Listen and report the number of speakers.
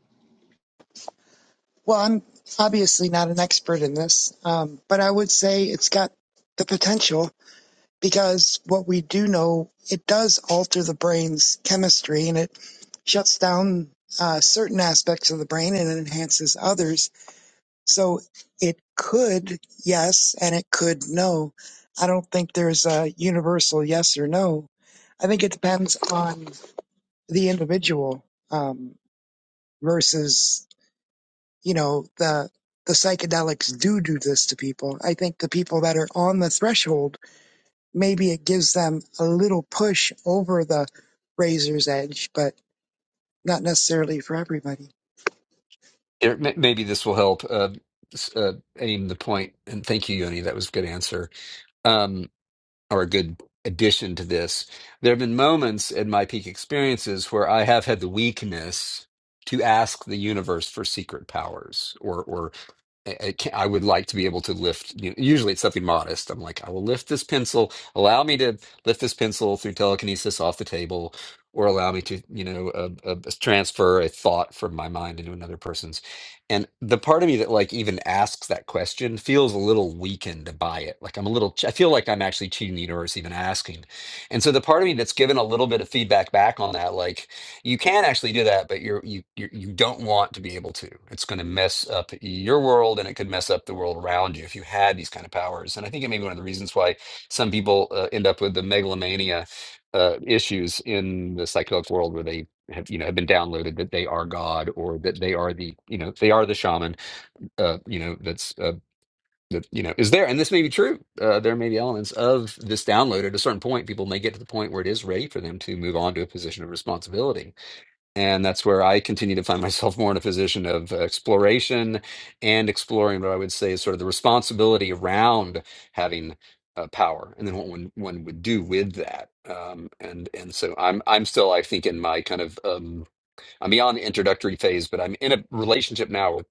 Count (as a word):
two